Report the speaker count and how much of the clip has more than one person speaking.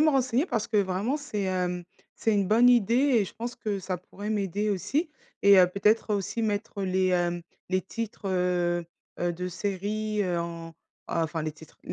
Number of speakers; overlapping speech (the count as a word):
one, no overlap